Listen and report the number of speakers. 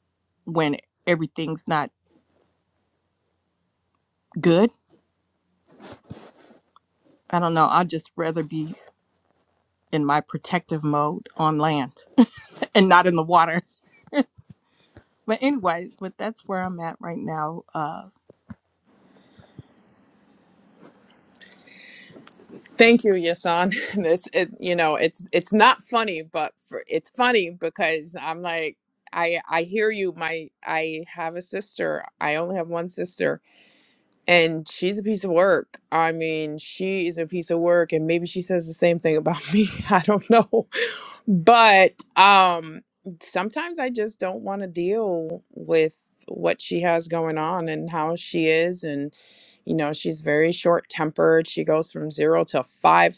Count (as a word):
two